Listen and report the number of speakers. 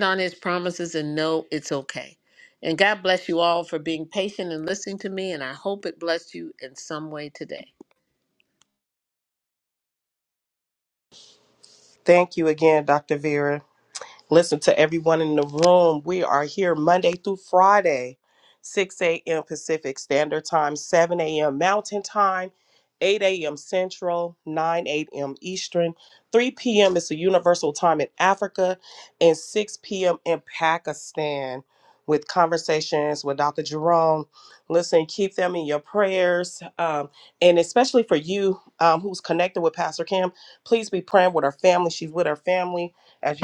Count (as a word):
two